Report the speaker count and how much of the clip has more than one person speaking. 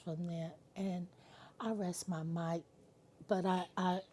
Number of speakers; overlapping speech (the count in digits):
1, no overlap